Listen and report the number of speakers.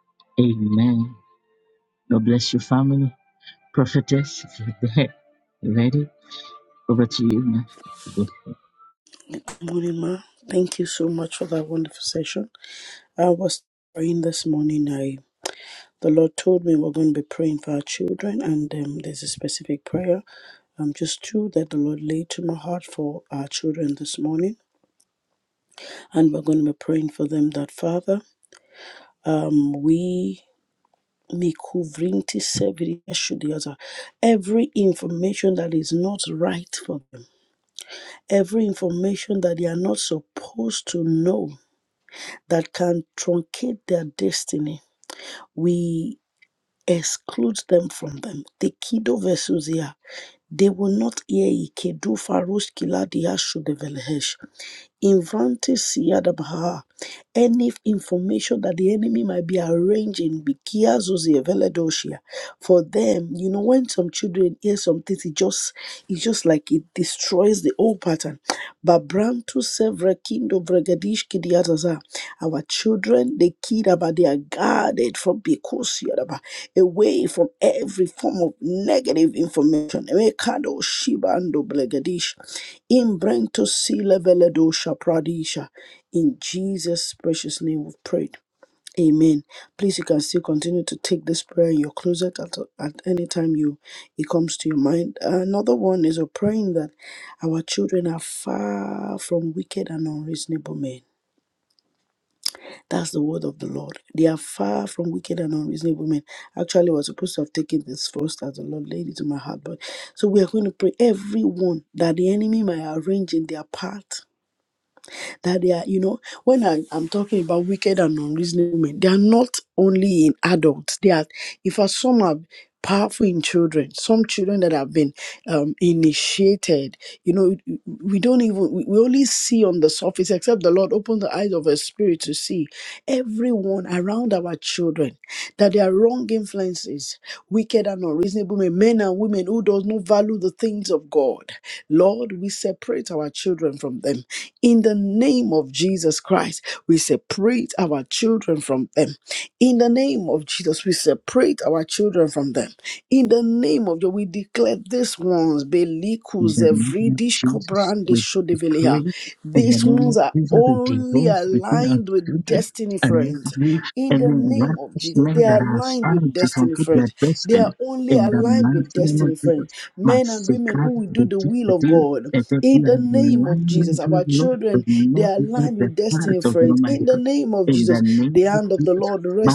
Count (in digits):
2